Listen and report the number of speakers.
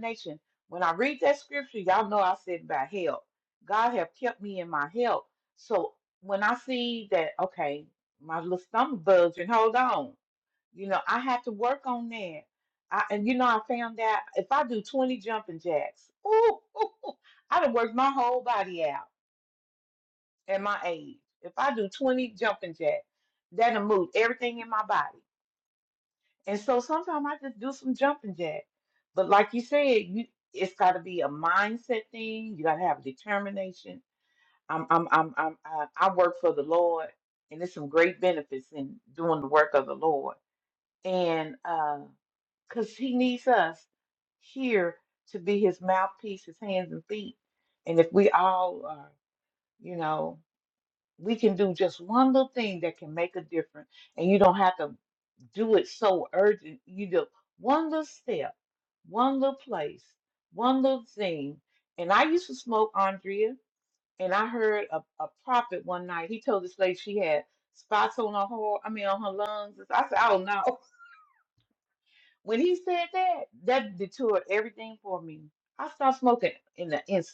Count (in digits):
1